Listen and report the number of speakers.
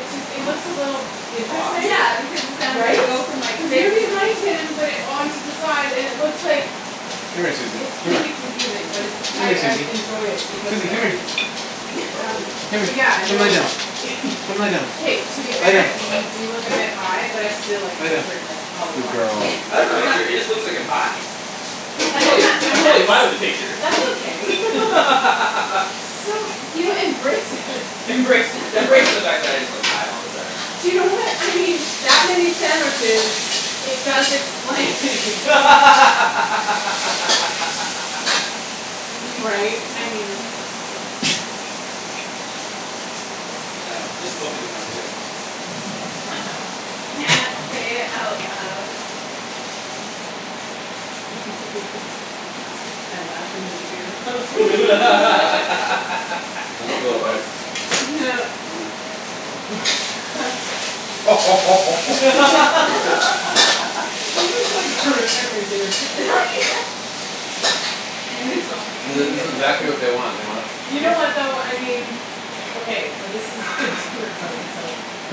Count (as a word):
four